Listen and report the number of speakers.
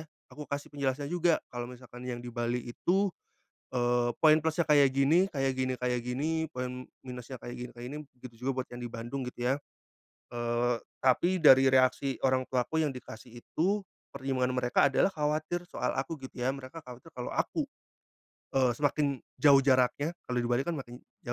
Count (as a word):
one